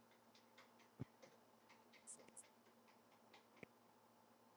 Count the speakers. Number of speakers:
0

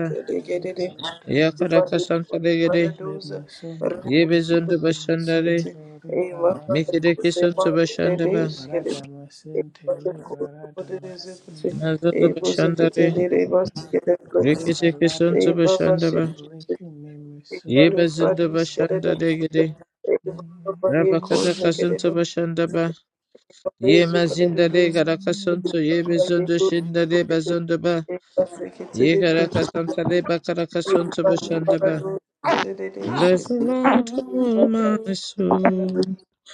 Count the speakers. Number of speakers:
2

